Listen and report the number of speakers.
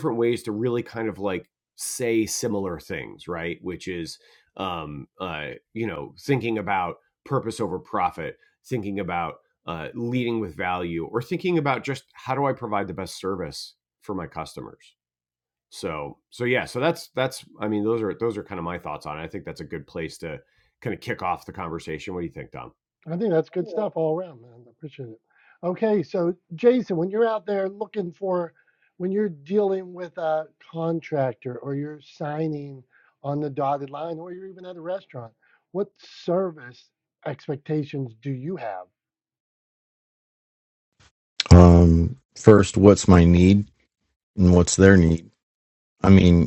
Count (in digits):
3